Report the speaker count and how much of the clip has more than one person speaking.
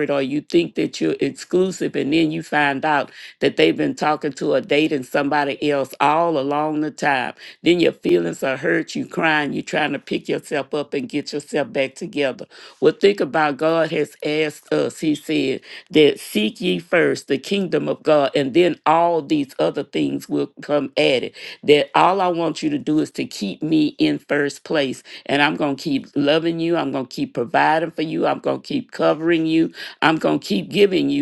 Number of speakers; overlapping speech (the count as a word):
one, no overlap